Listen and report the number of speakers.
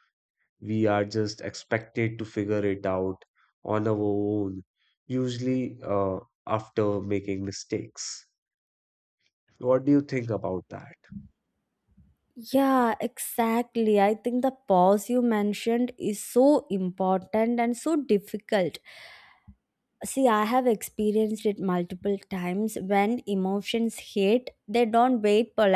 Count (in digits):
2